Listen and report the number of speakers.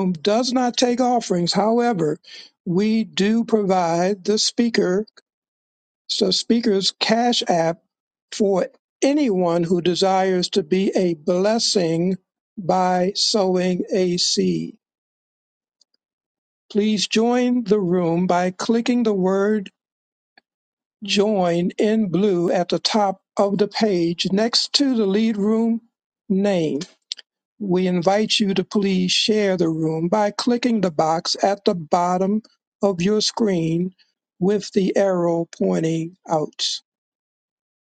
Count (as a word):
one